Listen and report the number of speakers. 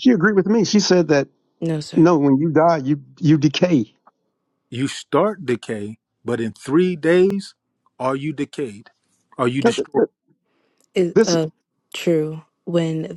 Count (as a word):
three